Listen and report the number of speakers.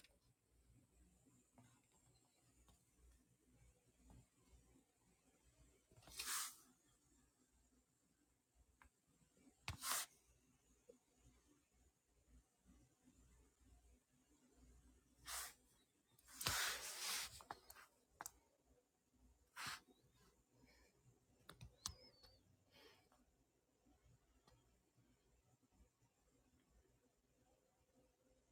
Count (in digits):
0